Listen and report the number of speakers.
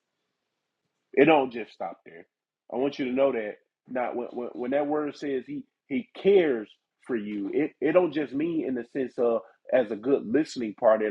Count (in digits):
1